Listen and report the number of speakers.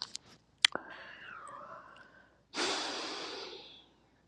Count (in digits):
0